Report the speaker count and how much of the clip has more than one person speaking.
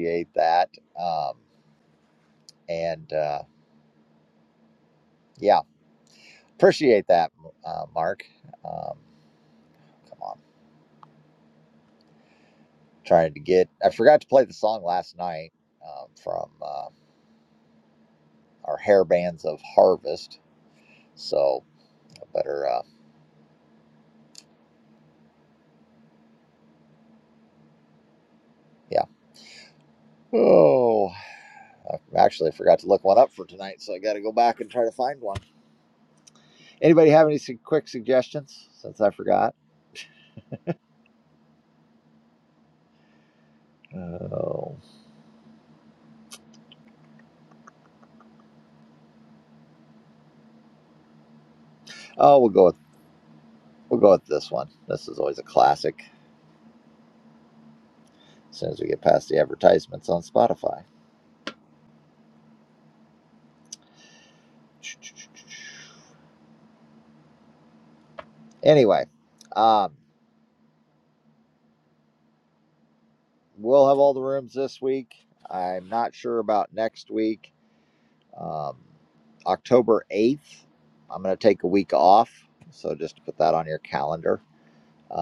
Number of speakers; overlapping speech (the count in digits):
1, no overlap